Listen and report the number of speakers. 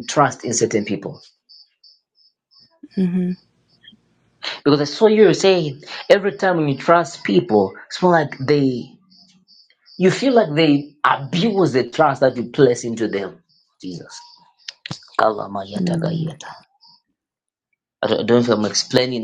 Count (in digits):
2